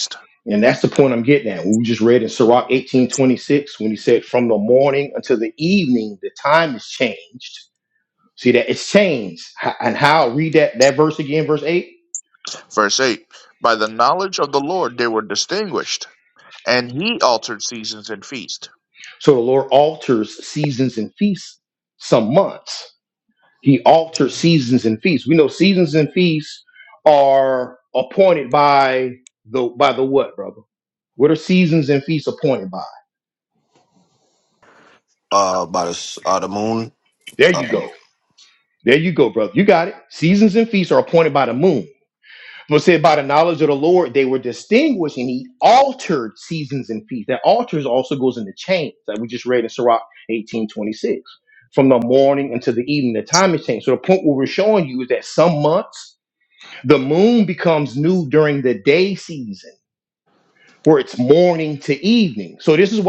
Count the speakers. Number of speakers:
3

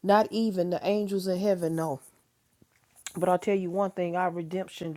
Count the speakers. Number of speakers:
1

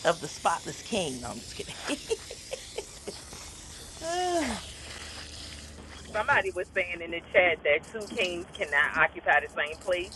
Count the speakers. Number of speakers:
2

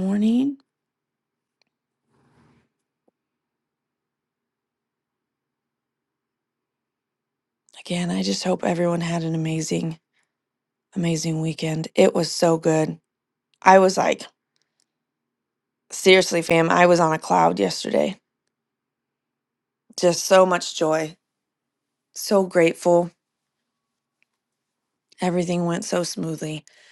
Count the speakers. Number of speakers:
1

